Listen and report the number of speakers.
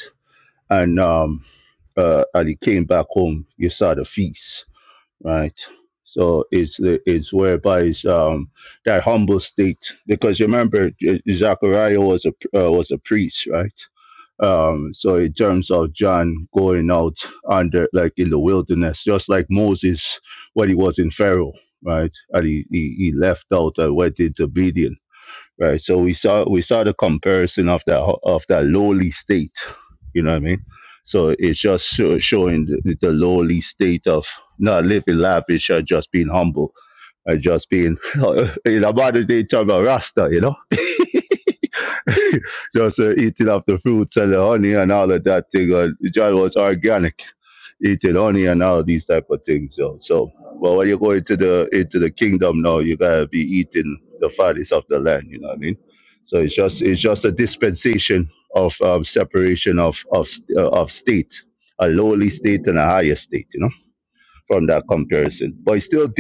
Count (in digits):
1